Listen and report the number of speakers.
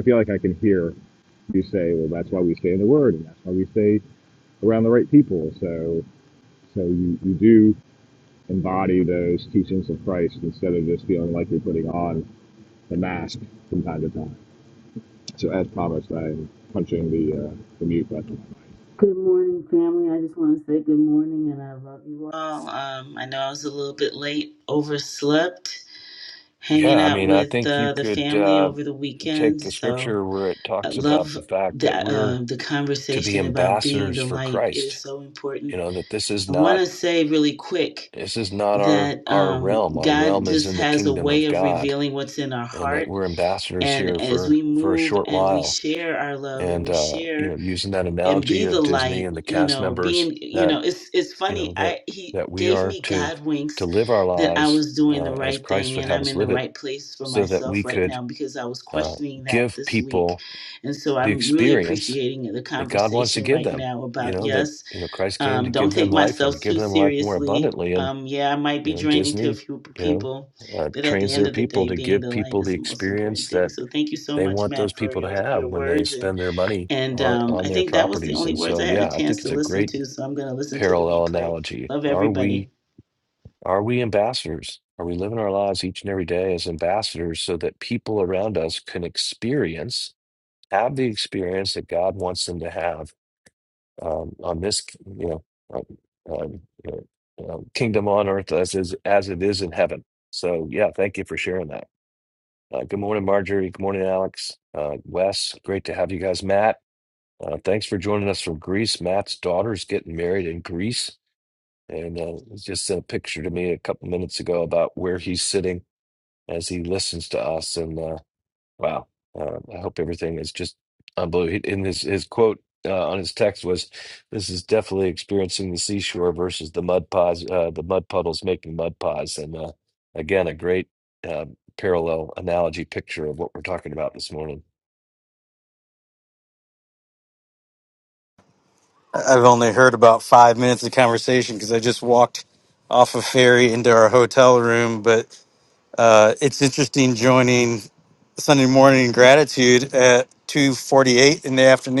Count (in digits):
4